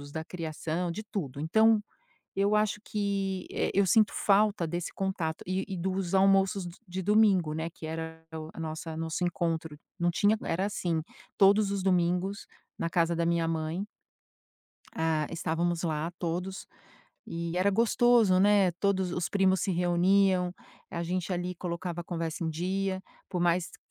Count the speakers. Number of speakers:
one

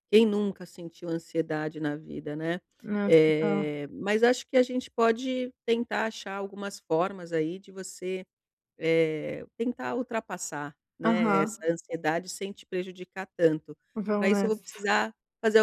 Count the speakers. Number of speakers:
two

